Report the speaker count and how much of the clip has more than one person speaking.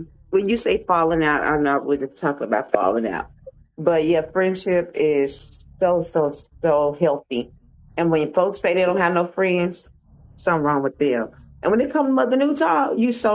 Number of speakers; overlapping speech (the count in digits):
1, no overlap